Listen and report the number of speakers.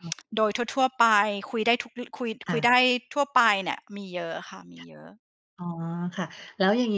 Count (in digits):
2